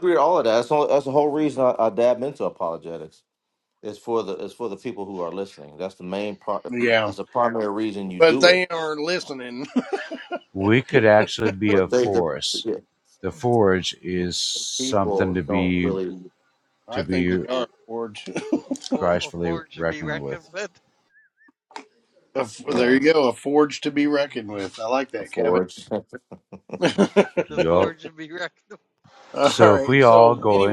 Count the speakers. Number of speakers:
4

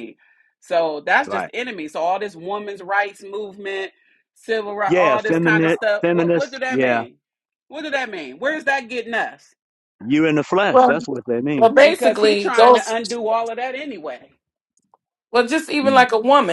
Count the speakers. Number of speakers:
3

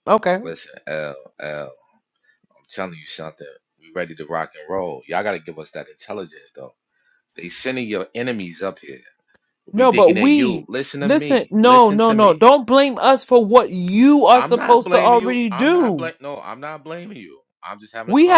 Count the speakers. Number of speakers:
2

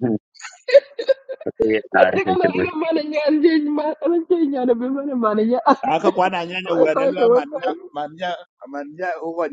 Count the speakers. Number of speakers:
3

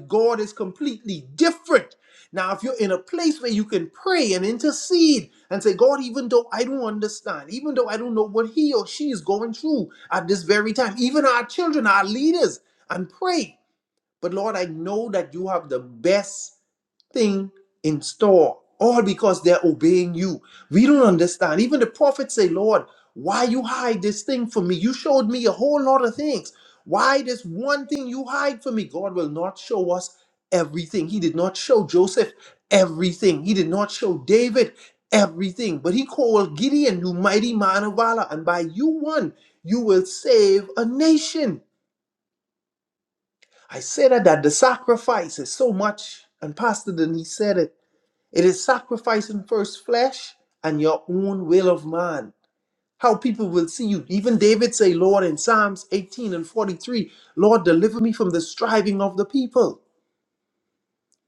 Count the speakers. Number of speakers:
1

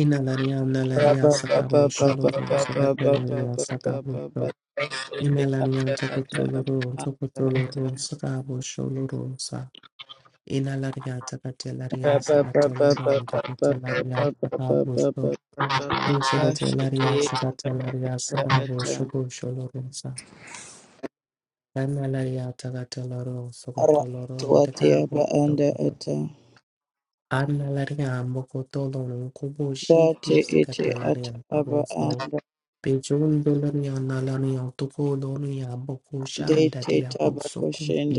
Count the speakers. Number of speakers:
2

